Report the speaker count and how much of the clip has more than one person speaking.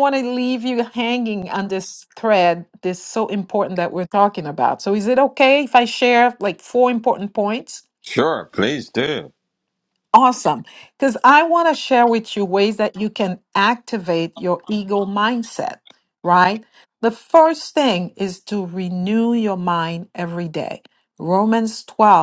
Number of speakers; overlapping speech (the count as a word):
two, no overlap